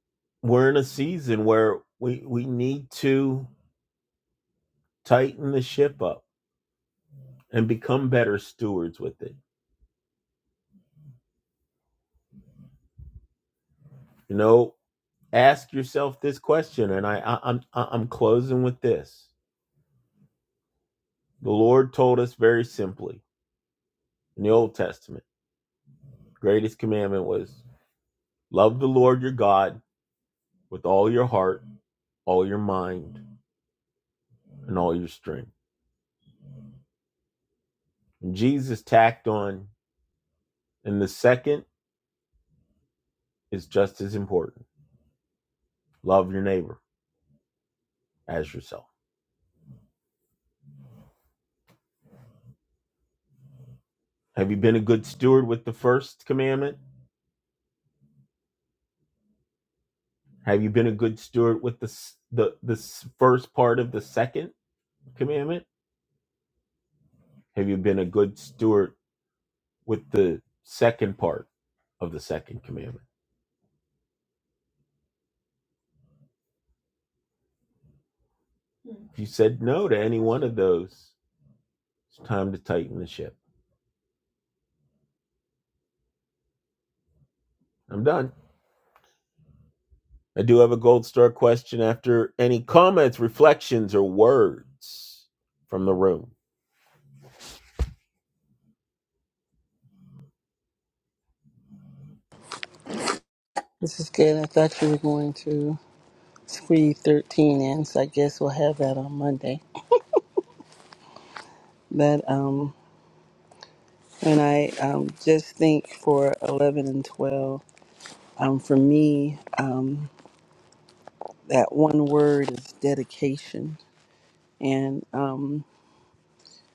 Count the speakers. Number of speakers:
2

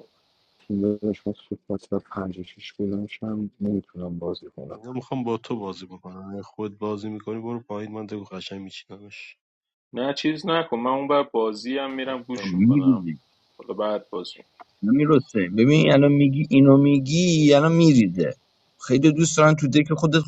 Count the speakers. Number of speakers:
4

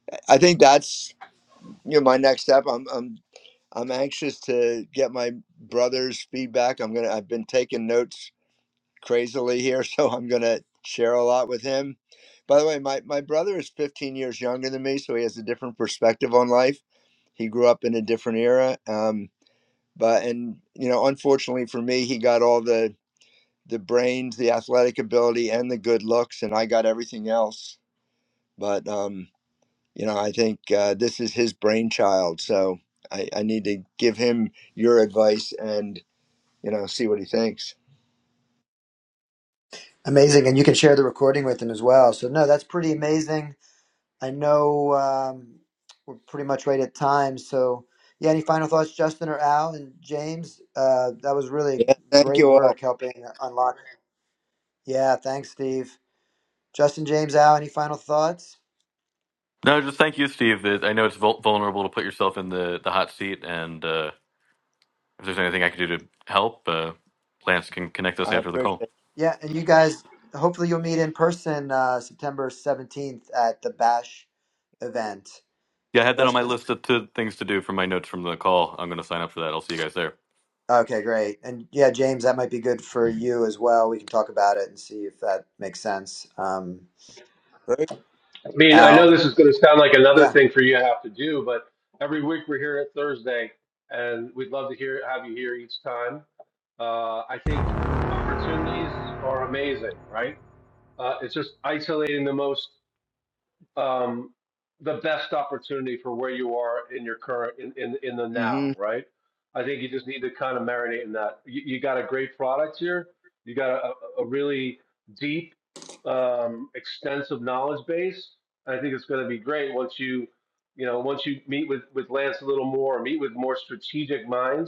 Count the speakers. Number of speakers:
4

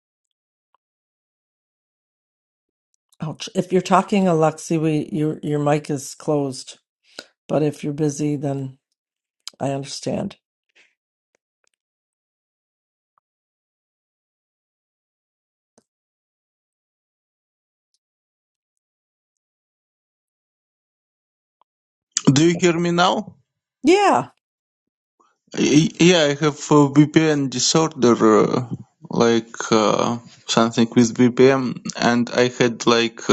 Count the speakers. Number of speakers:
2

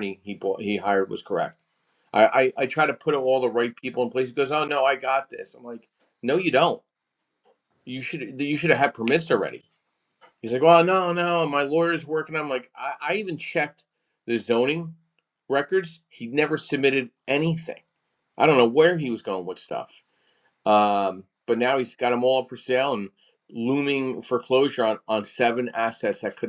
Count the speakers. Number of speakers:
1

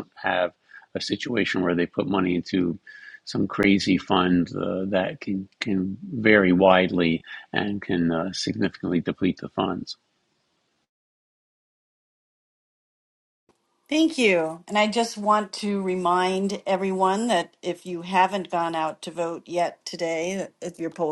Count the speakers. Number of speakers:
2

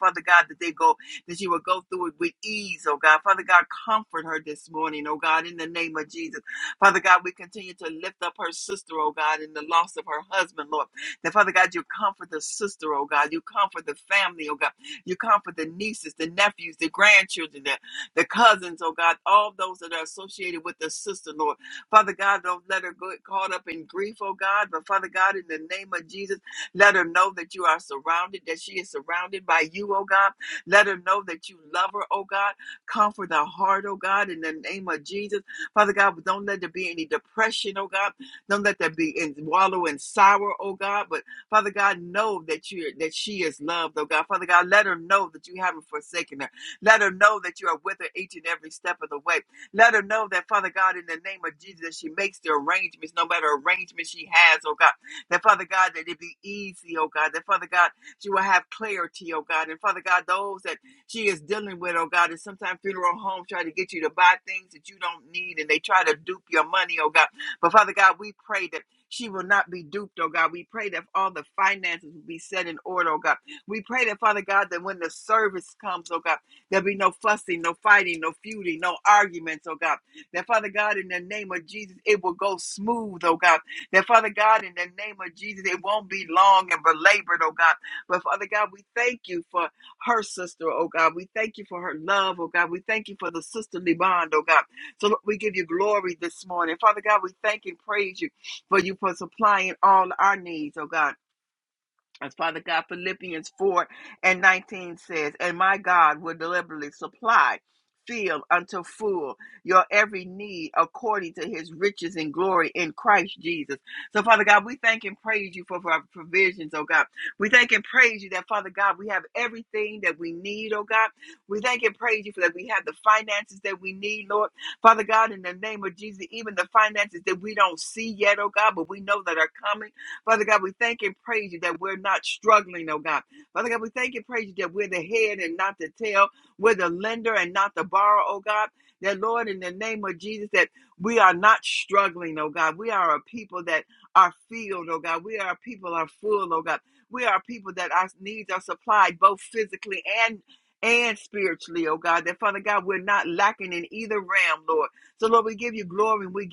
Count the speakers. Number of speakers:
1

